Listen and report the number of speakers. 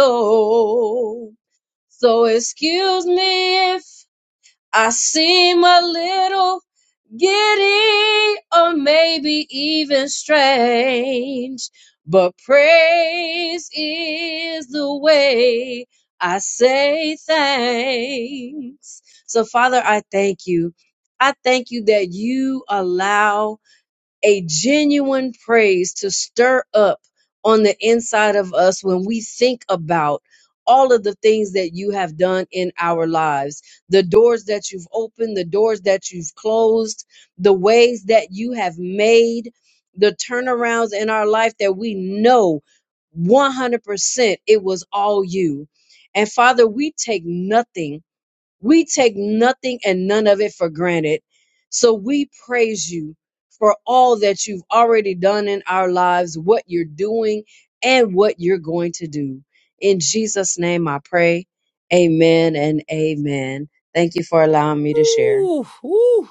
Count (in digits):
2